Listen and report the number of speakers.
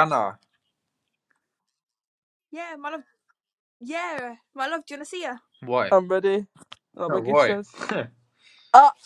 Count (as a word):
three